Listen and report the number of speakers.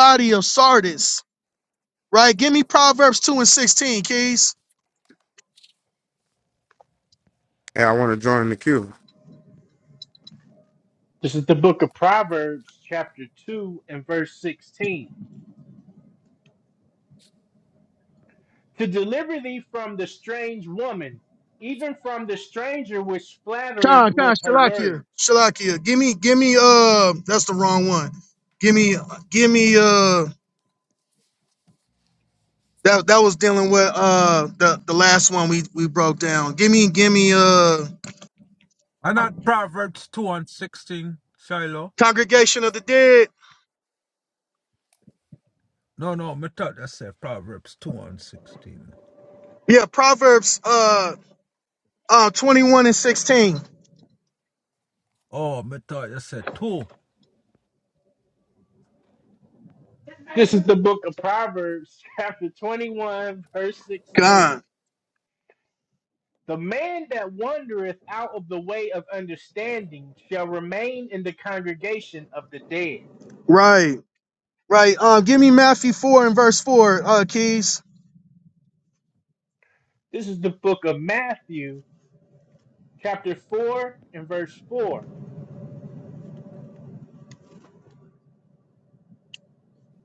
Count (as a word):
four